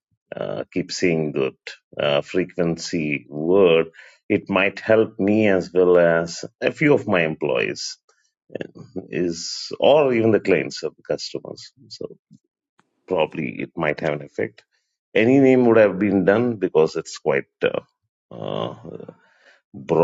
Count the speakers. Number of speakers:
1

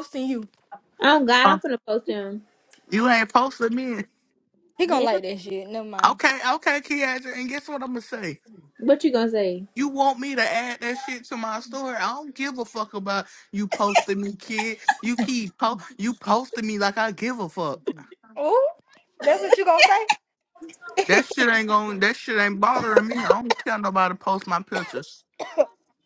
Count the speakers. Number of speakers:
3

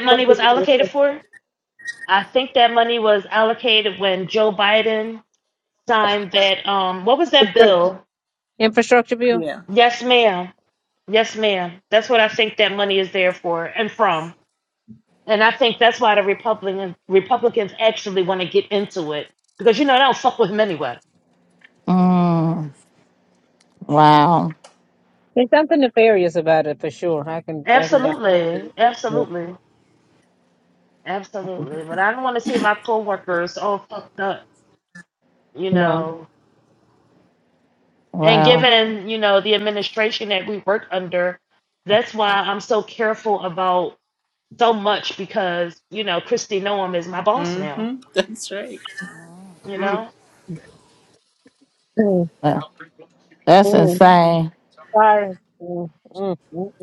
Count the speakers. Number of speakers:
4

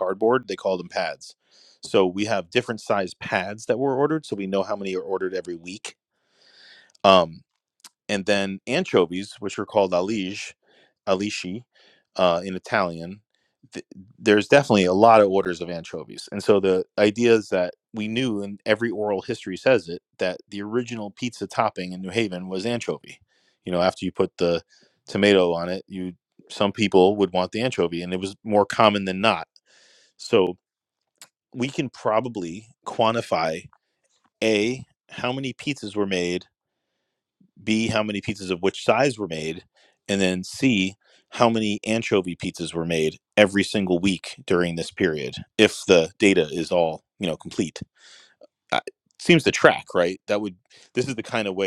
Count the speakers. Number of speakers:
1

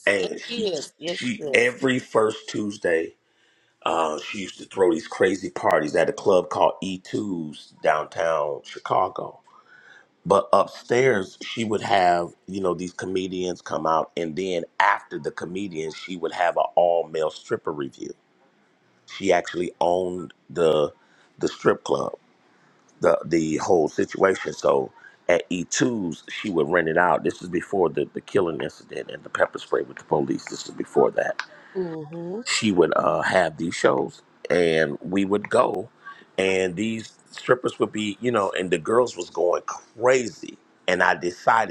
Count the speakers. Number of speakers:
2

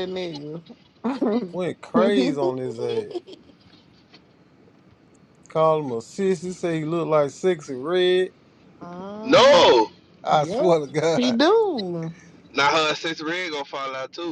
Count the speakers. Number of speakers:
3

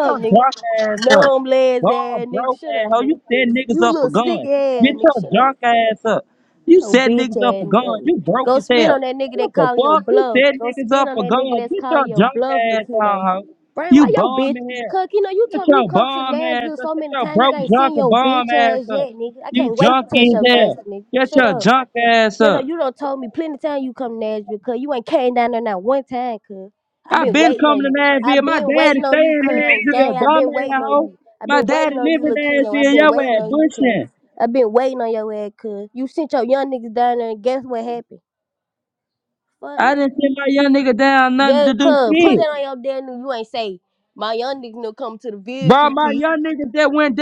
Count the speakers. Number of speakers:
2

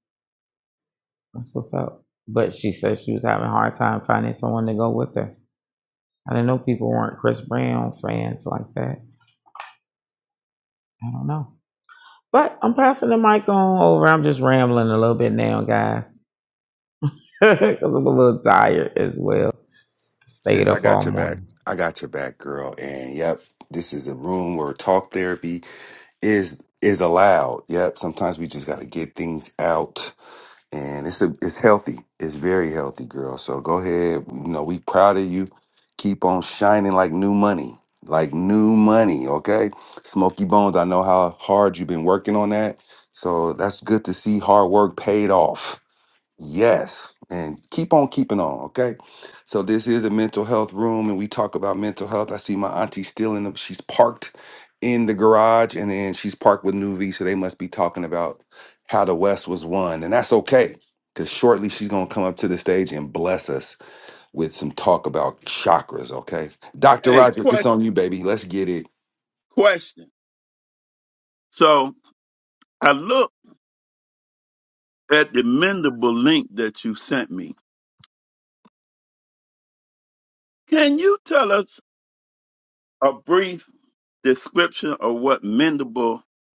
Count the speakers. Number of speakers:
3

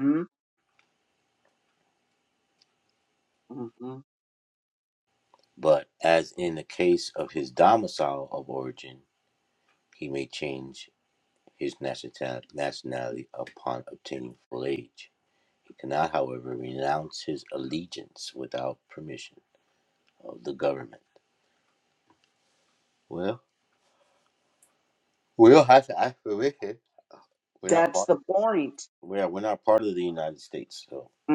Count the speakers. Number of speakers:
2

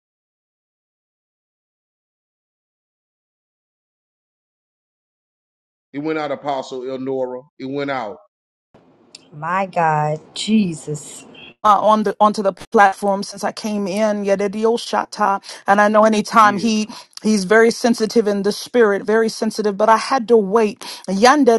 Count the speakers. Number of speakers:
3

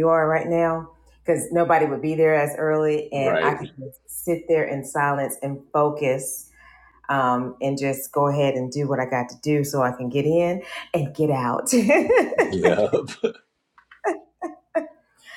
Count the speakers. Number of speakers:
2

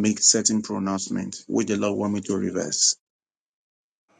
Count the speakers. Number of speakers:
1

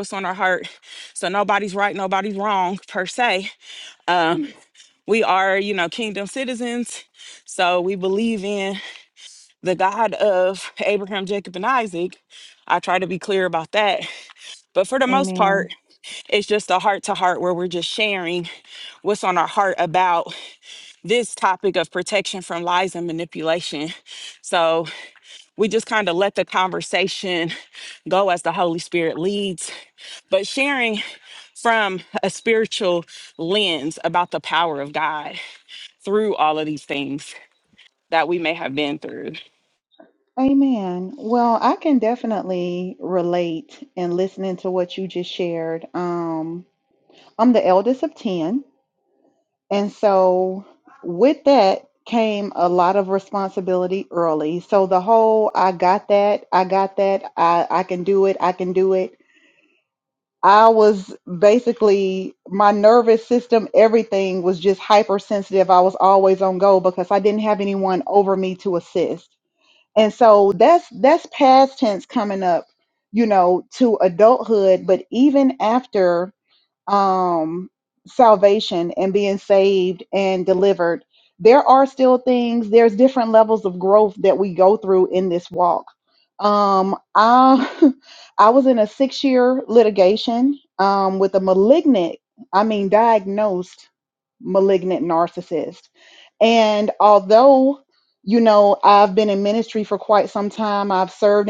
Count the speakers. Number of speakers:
2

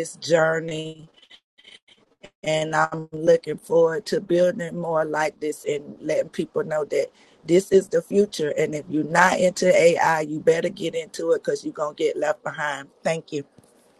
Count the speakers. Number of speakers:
1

